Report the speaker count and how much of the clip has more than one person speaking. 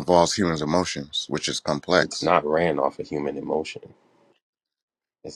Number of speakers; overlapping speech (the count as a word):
two, about 4%